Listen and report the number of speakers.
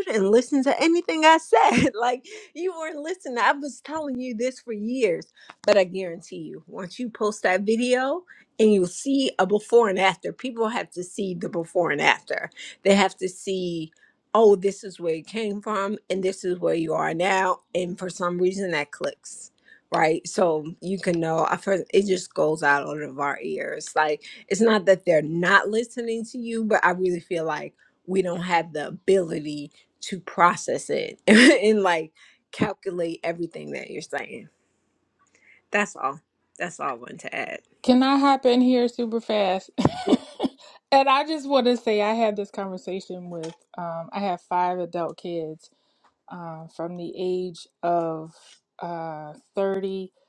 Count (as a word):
two